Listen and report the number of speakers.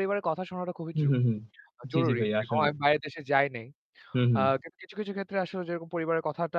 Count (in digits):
2